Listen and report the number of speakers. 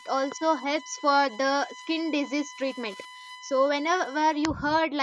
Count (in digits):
1